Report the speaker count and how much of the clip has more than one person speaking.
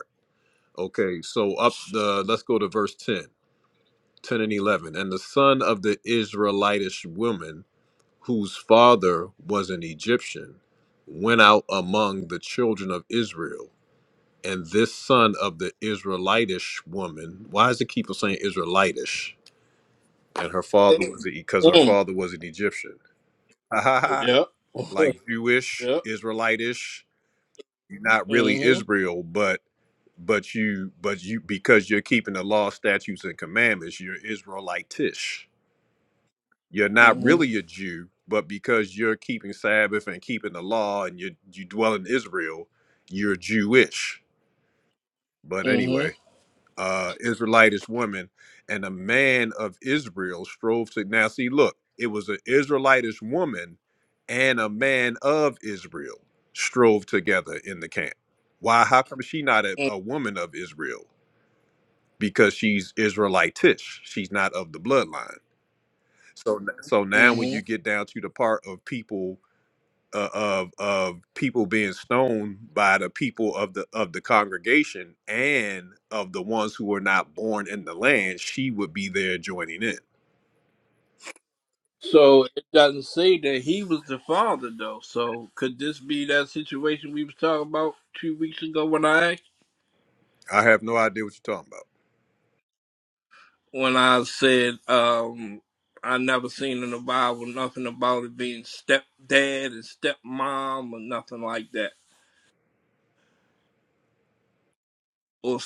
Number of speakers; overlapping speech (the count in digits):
2, about 2%